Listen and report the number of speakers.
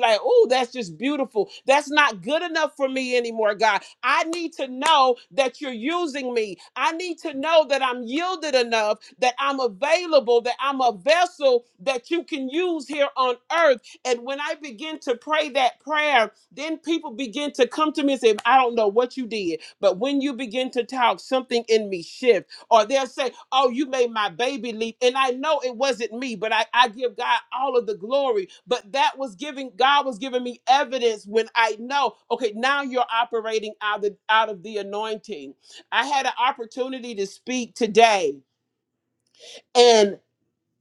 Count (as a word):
one